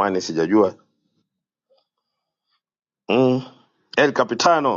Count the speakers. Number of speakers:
1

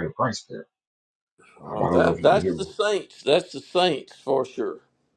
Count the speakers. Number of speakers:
2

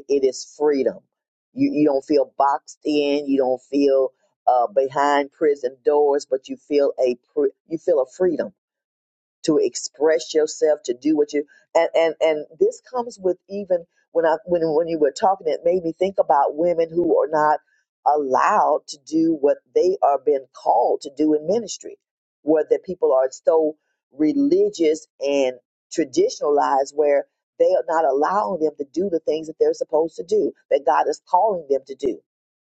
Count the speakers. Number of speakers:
1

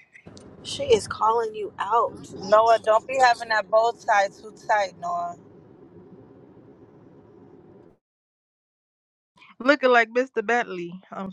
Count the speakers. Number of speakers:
3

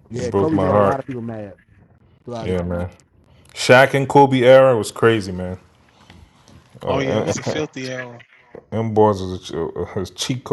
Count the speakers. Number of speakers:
3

